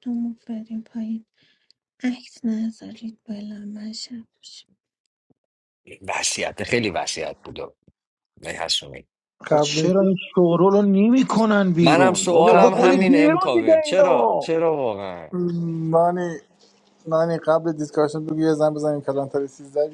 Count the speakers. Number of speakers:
4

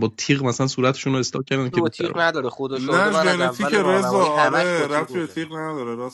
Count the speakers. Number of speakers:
3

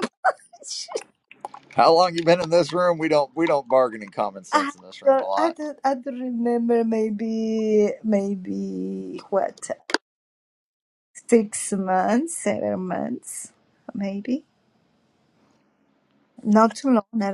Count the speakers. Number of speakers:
2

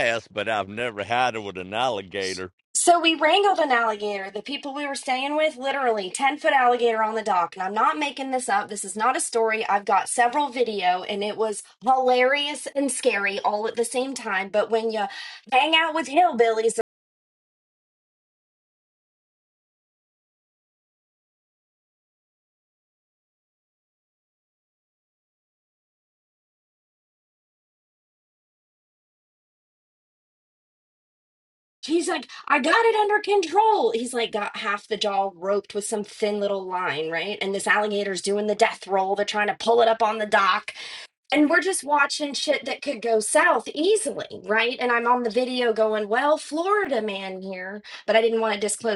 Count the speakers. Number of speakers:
2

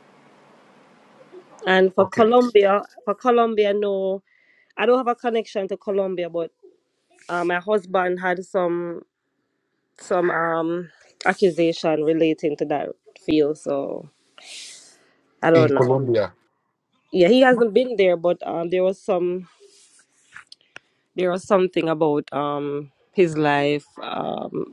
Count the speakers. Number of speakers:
2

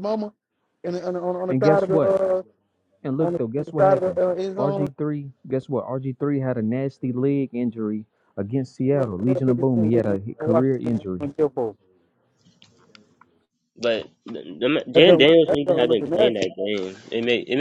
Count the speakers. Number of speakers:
3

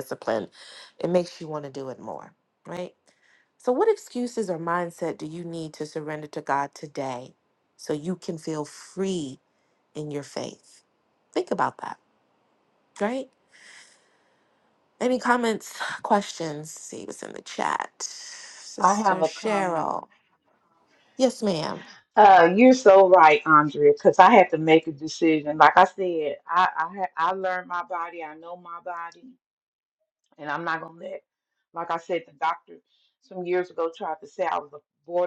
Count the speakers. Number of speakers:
2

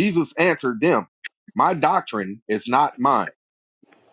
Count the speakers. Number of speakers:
1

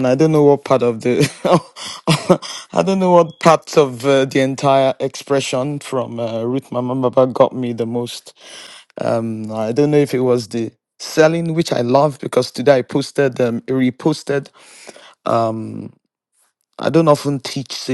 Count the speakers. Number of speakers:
1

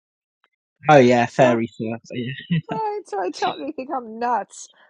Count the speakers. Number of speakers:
2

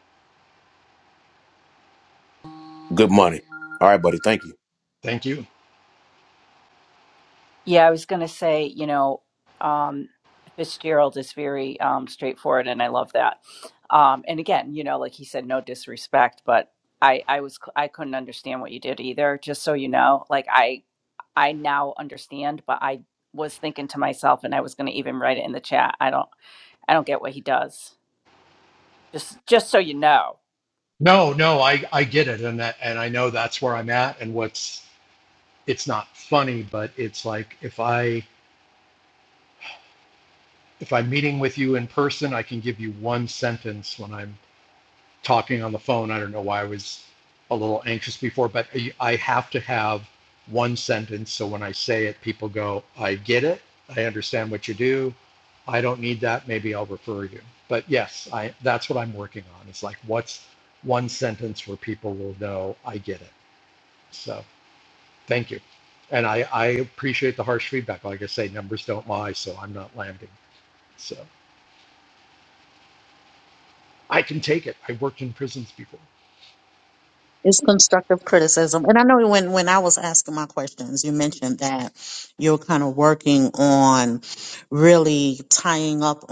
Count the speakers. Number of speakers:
4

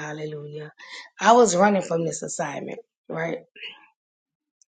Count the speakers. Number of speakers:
1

